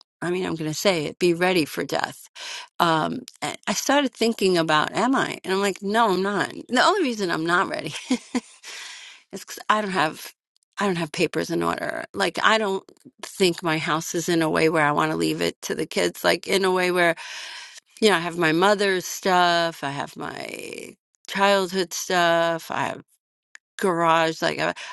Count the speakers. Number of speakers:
1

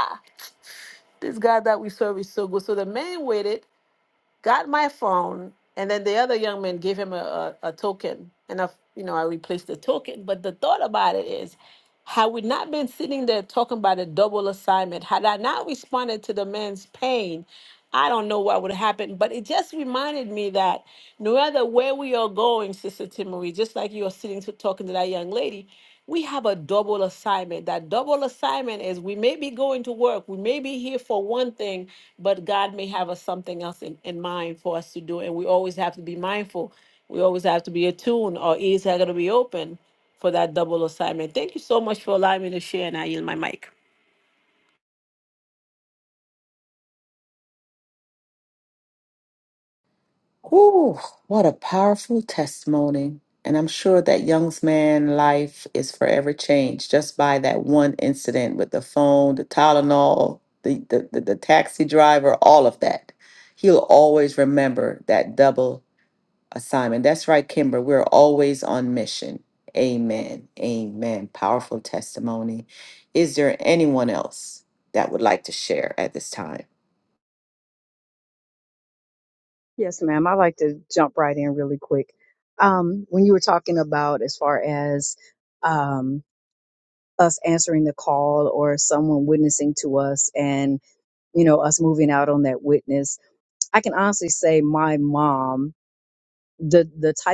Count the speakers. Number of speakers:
3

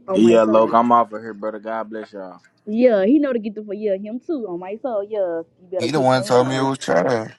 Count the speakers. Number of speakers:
3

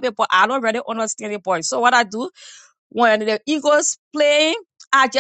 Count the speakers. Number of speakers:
1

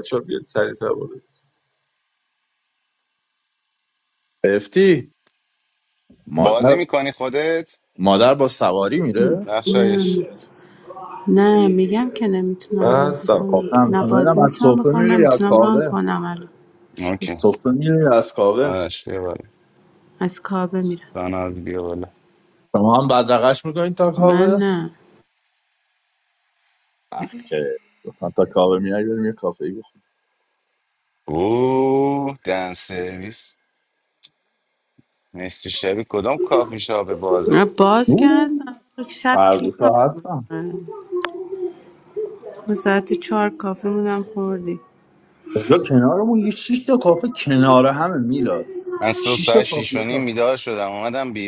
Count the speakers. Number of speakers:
4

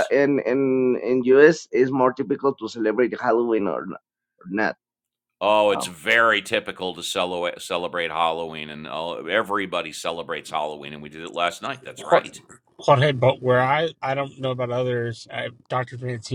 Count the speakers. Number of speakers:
3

